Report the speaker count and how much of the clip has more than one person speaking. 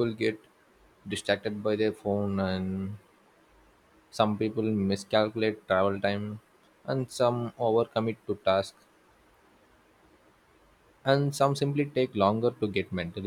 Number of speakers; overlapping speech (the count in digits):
1, no overlap